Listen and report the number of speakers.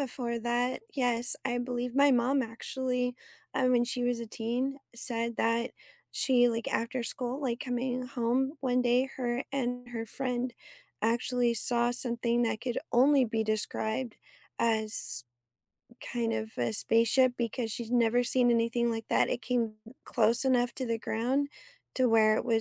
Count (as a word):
one